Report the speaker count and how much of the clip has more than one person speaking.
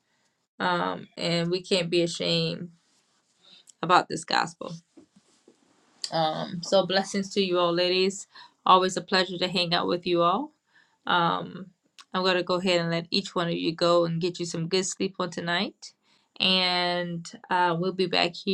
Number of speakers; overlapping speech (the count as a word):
one, no overlap